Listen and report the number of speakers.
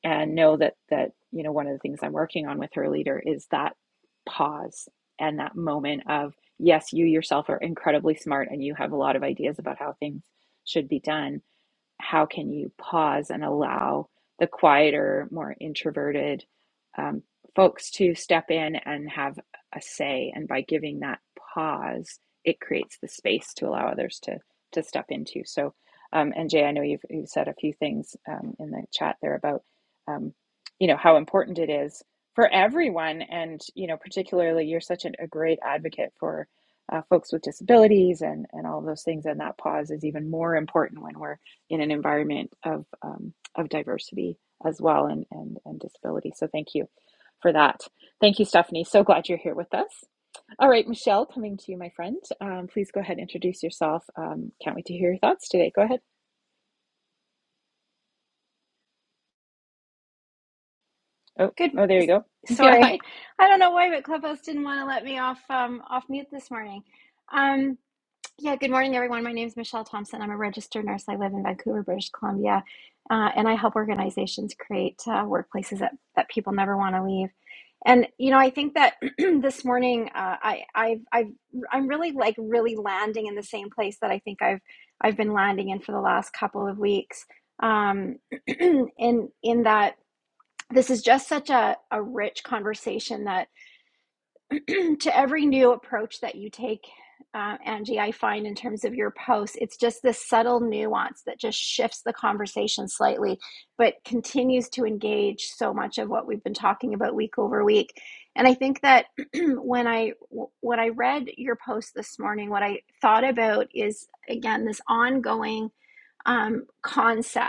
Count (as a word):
two